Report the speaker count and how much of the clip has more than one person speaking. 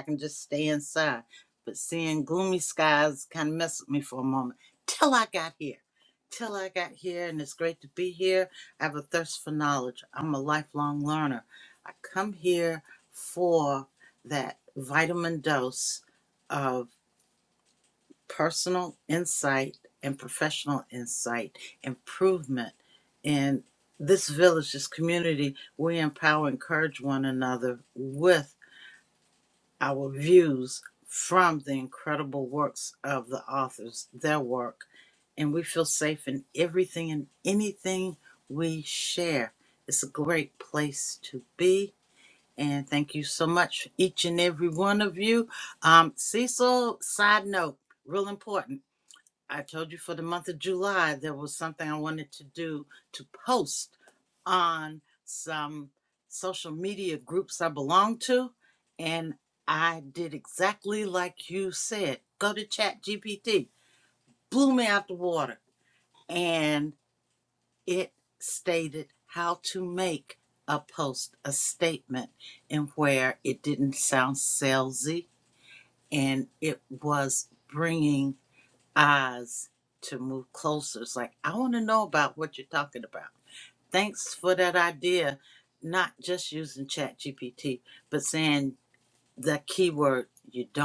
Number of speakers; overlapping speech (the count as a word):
one, no overlap